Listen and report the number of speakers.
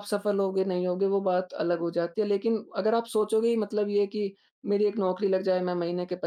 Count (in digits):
1